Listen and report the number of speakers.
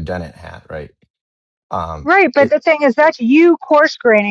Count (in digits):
2